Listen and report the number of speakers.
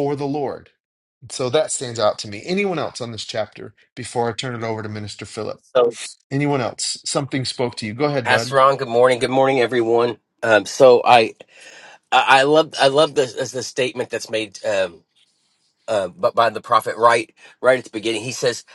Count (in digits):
2